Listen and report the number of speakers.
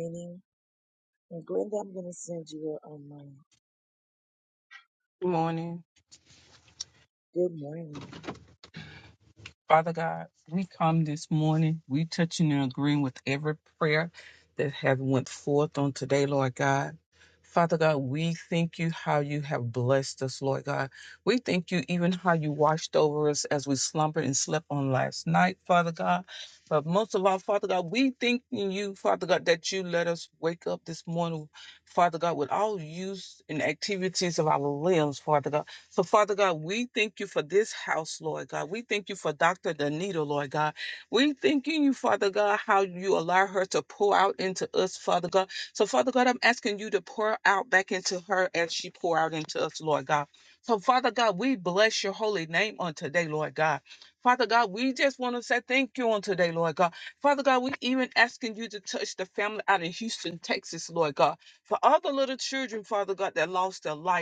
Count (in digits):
2